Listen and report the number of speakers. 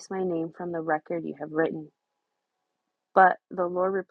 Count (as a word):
one